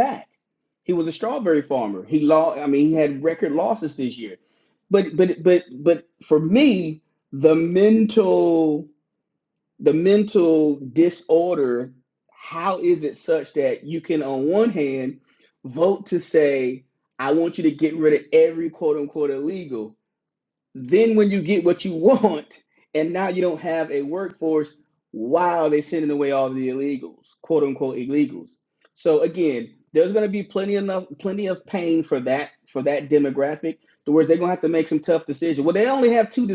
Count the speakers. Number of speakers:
1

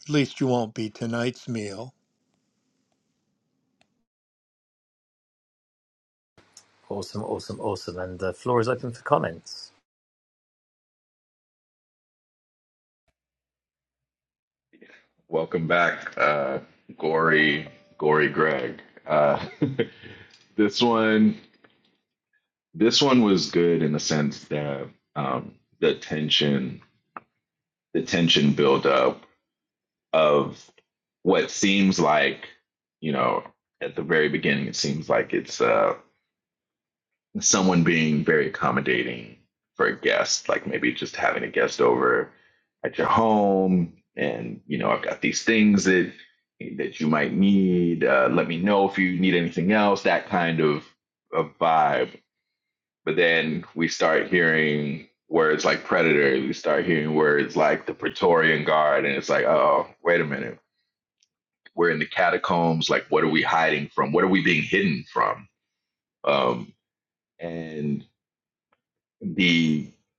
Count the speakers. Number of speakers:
3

